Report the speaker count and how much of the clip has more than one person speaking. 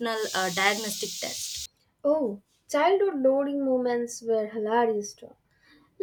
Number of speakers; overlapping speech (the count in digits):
2, no overlap